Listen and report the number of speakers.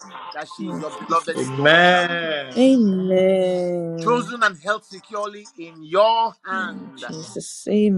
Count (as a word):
three